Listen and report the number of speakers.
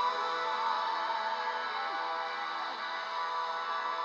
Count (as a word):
zero